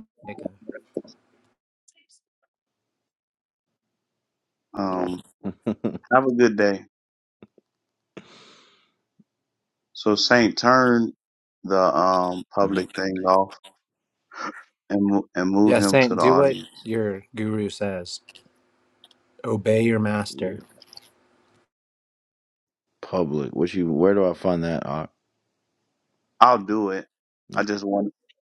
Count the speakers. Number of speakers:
3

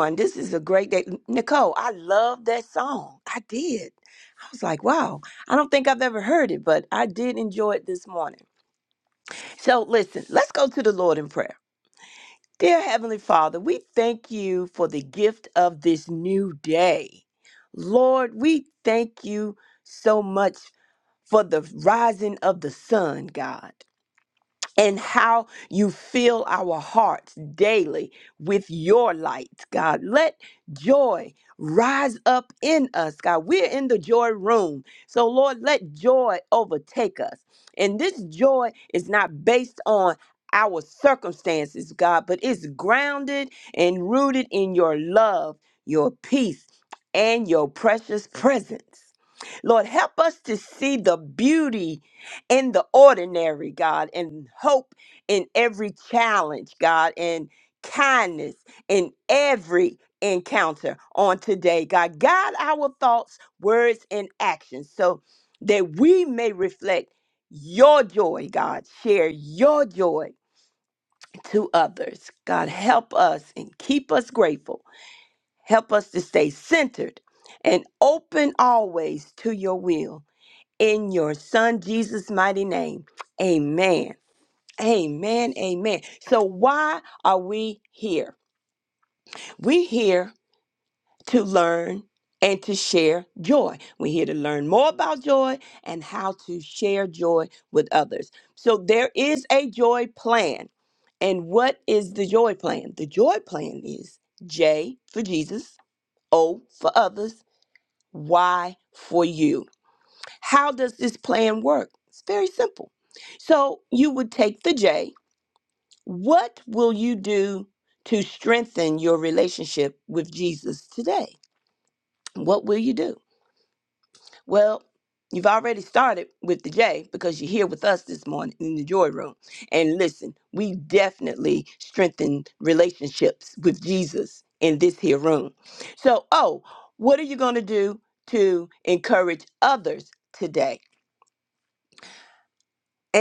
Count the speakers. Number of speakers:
1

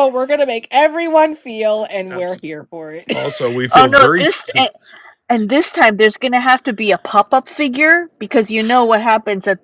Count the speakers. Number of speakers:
3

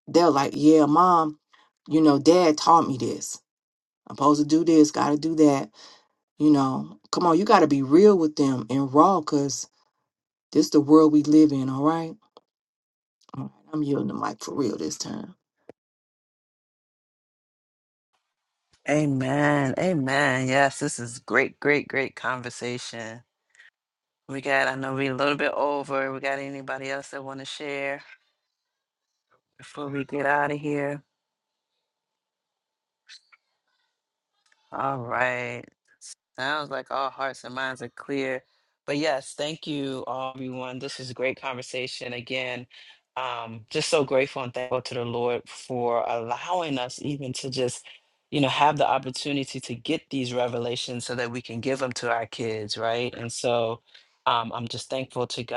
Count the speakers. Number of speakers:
2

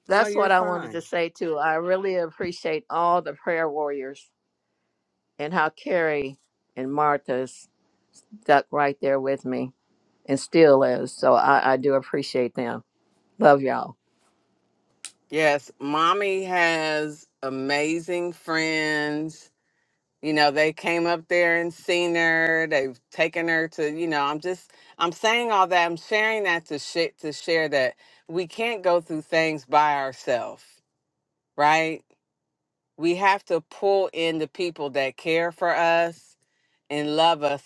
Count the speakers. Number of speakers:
2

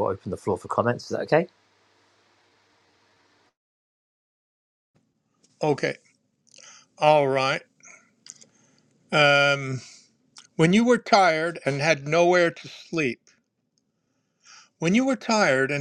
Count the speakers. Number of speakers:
2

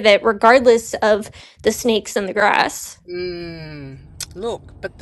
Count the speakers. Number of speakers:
2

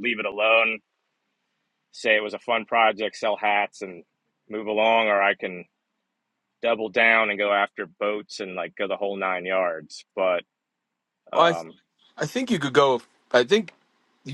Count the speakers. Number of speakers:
2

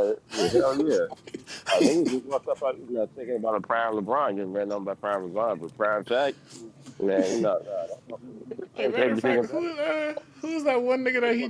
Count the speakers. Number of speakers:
2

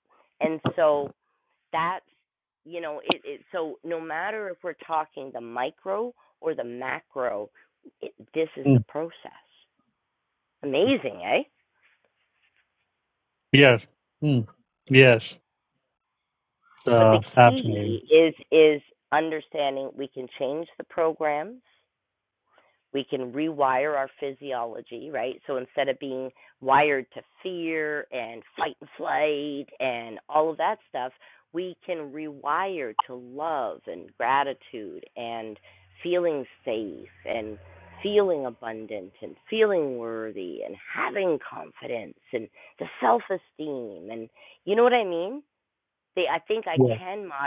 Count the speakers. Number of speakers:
2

